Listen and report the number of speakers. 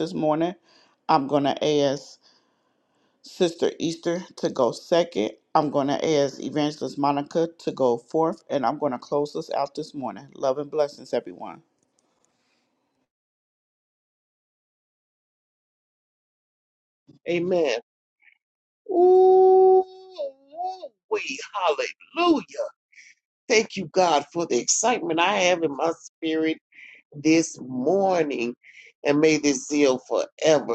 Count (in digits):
2